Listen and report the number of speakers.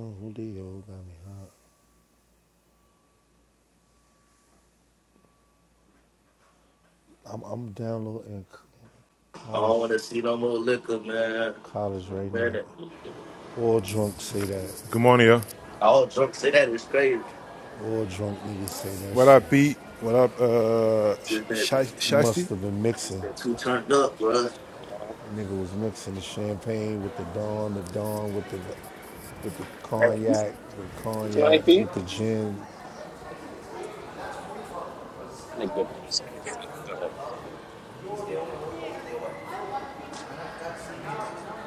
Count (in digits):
4